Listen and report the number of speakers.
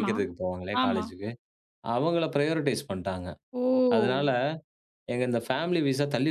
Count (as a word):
two